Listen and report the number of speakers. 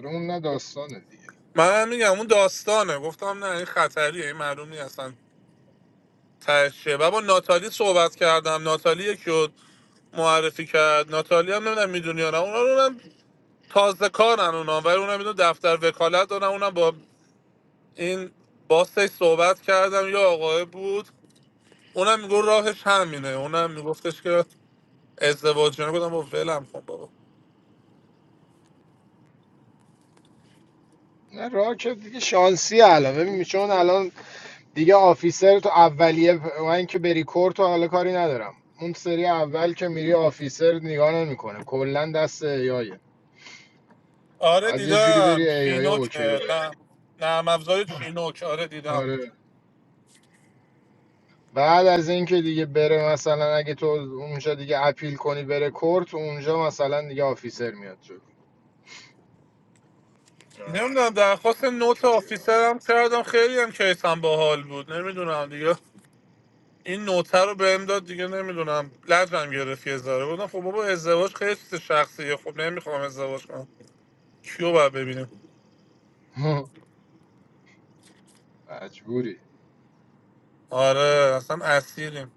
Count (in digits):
2